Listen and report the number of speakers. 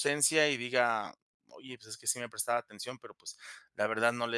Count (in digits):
1